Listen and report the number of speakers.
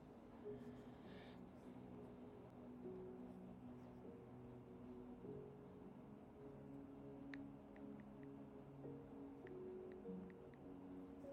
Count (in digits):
0